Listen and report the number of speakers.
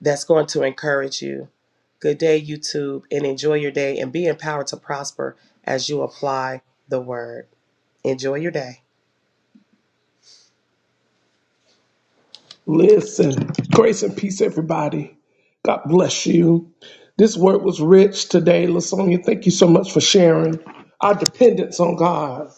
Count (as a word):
two